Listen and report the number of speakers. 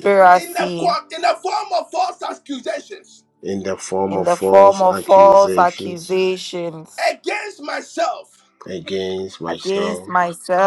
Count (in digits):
3